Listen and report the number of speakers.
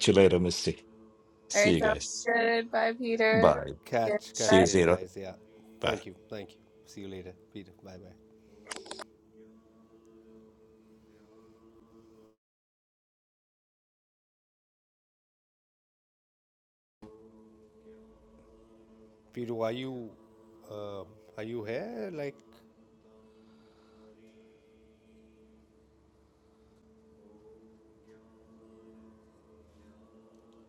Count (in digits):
3